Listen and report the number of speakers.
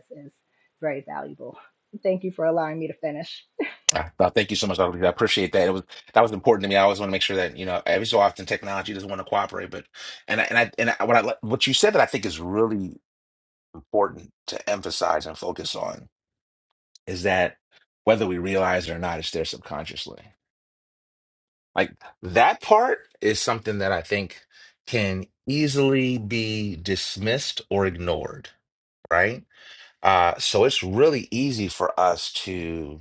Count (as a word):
two